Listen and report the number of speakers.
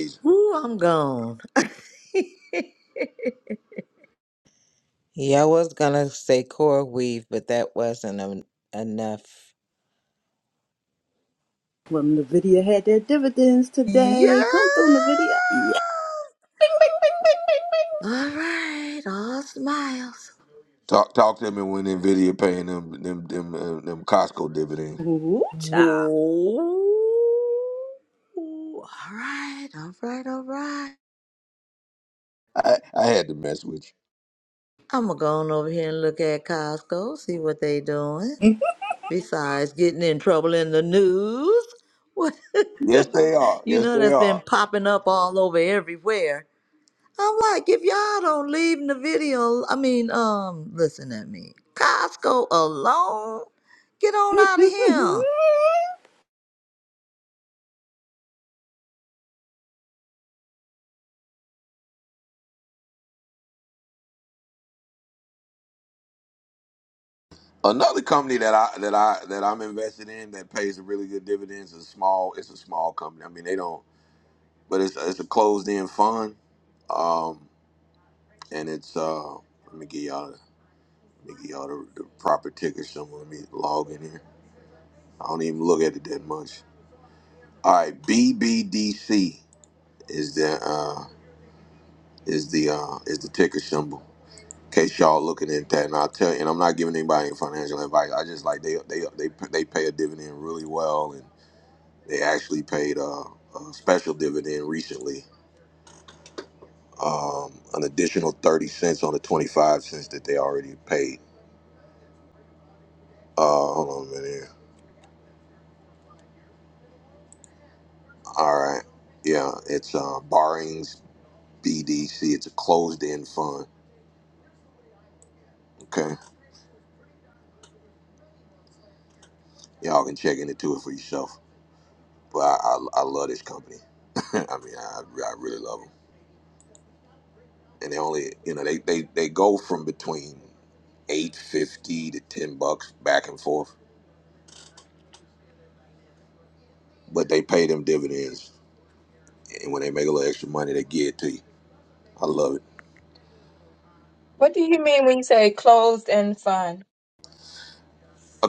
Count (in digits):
5